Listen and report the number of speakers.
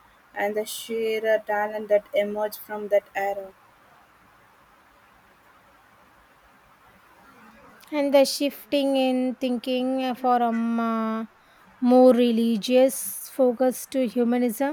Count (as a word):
two